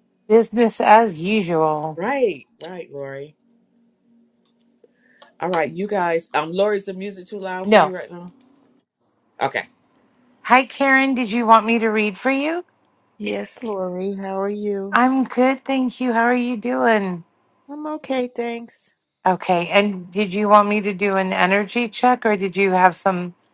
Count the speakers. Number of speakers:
3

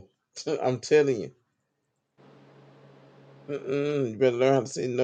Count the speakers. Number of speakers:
1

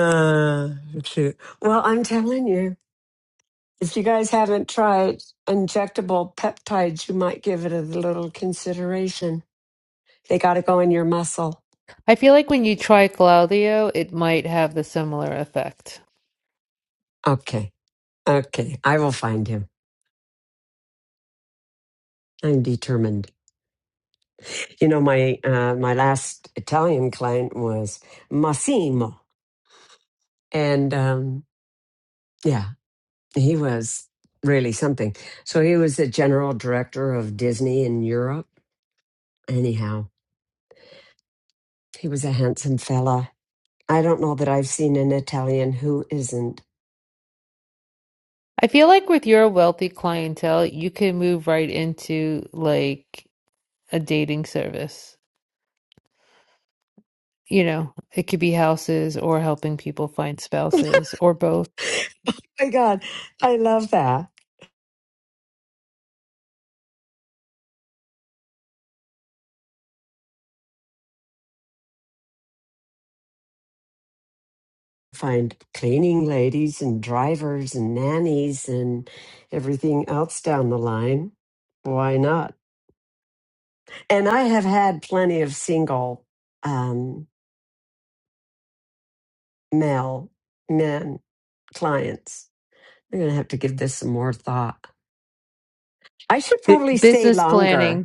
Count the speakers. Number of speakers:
2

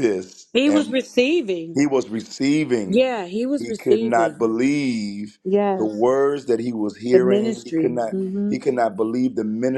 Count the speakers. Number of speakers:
2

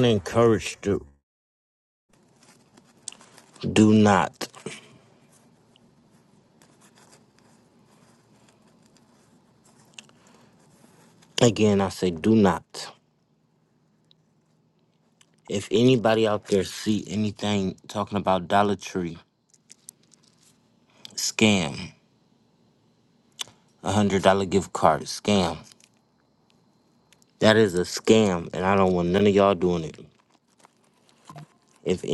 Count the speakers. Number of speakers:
1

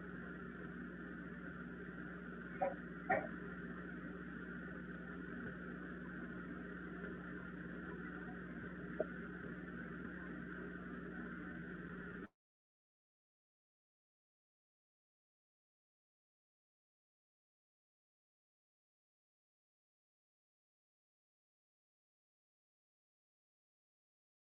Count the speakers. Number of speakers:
0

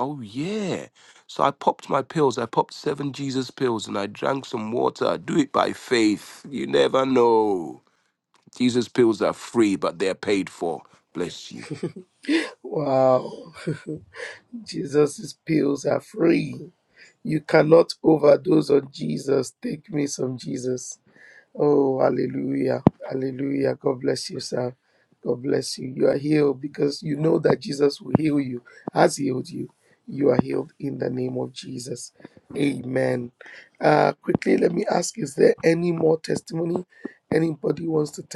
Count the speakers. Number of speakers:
2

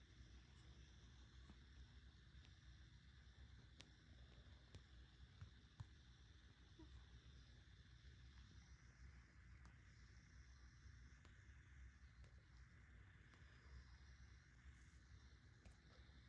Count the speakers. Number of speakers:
0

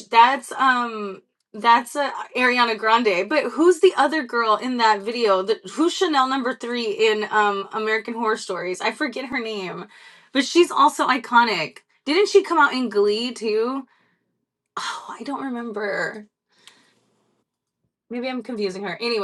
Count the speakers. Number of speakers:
1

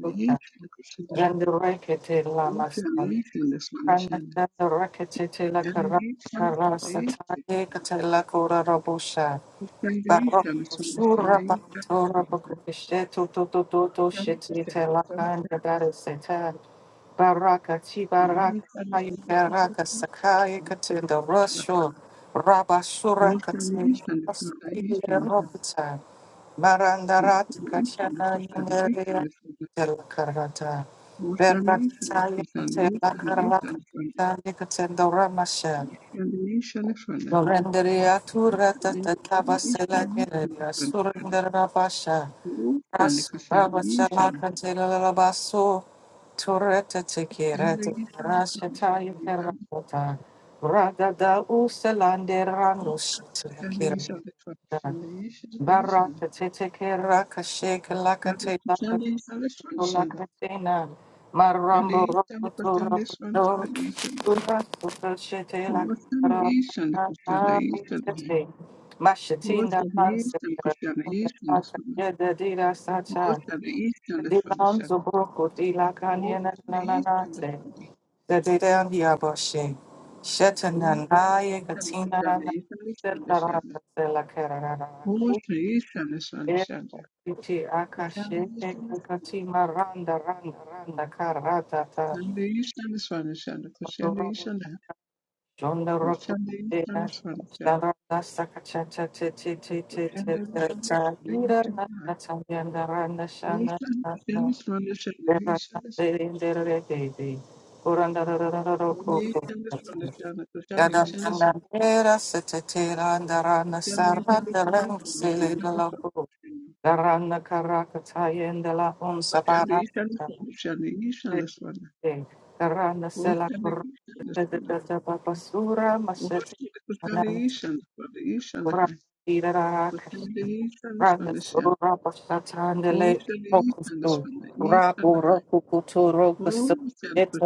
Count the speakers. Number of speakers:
2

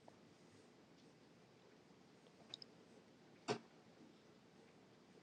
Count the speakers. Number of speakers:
0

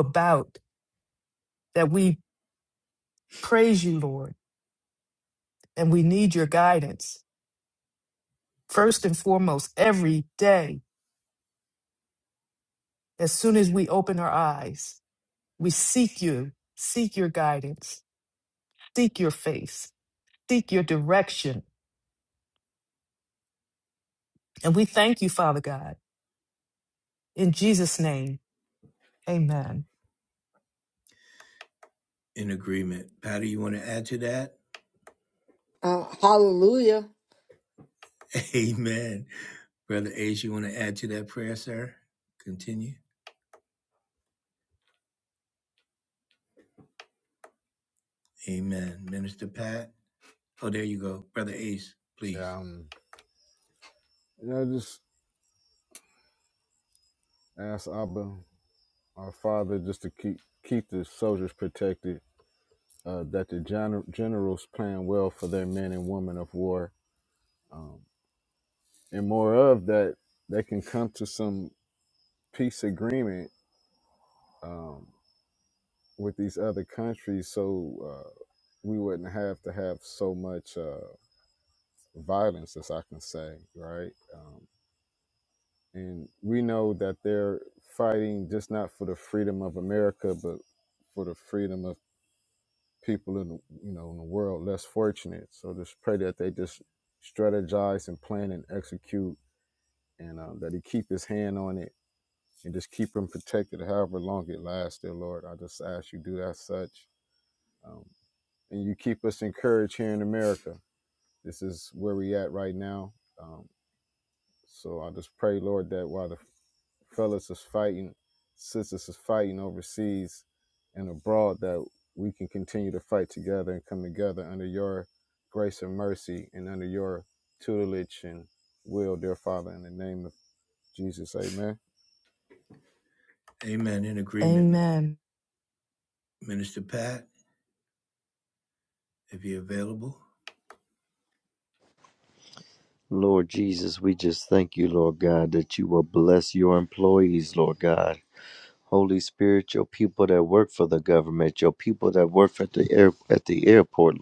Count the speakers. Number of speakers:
5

